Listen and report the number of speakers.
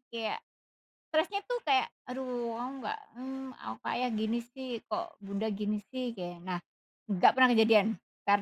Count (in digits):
1